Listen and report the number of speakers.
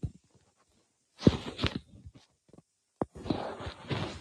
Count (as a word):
zero